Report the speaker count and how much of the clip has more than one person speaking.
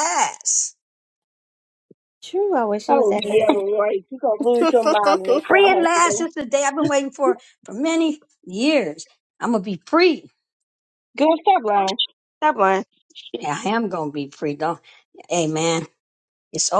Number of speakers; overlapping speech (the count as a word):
three, about 9%